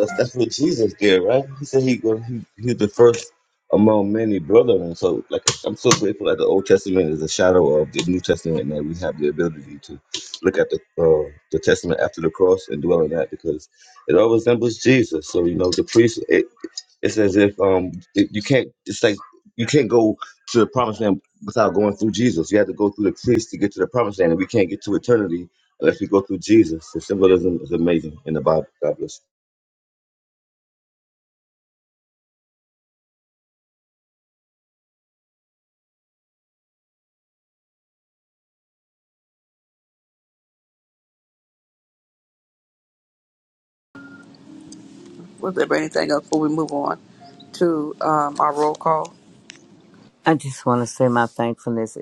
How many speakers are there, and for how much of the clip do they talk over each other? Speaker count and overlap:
three, no overlap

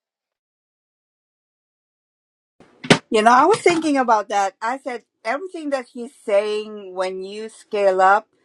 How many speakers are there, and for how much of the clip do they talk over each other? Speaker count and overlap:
one, no overlap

